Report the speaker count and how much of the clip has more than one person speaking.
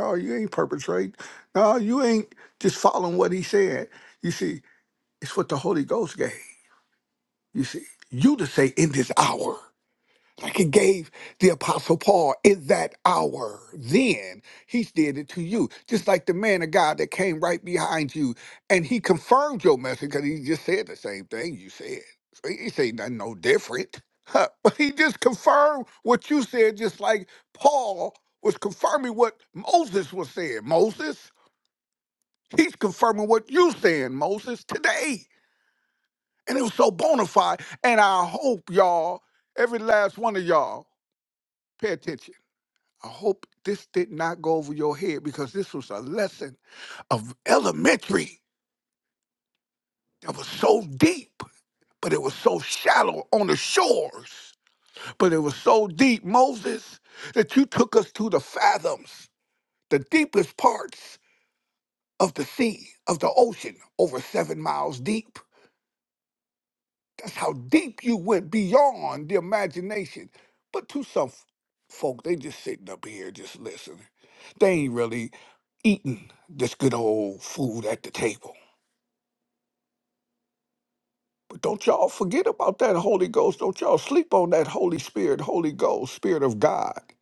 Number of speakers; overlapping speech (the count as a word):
one, no overlap